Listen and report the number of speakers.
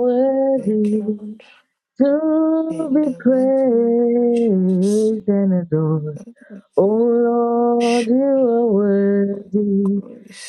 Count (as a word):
two